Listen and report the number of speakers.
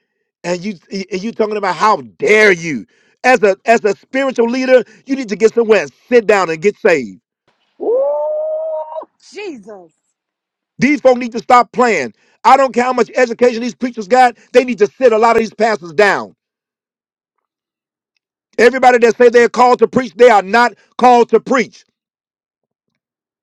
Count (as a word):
two